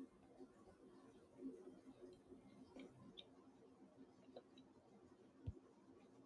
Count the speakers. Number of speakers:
0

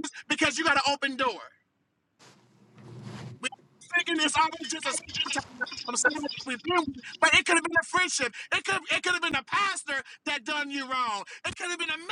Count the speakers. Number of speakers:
1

